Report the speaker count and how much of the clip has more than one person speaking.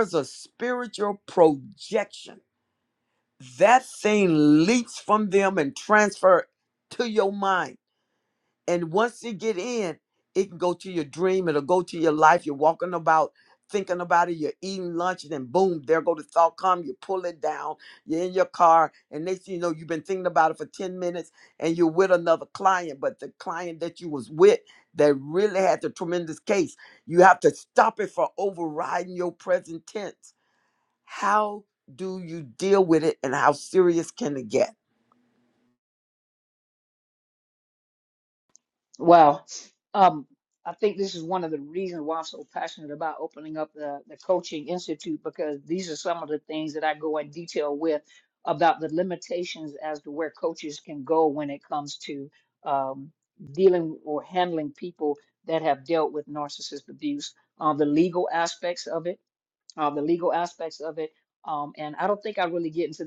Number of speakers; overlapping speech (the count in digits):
2, no overlap